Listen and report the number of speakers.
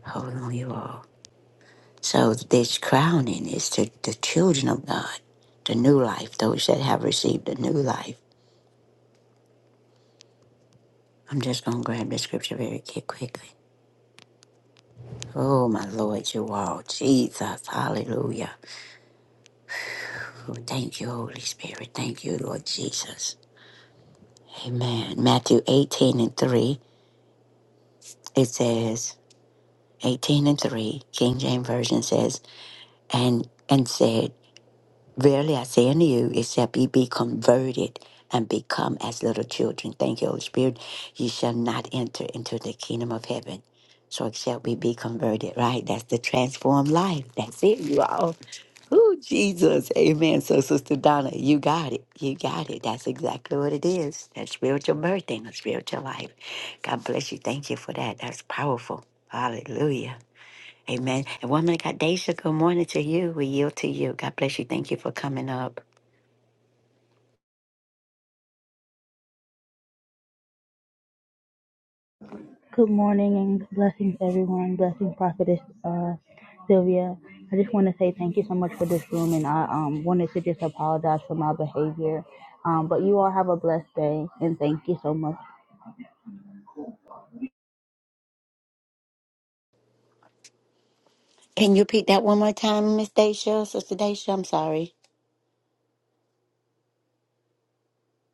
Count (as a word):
two